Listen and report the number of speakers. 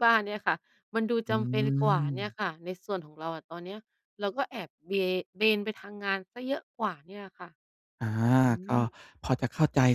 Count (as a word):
two